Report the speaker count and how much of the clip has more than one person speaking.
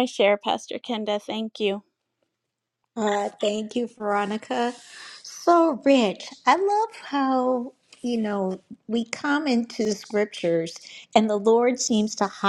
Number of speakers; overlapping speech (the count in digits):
2, no overlap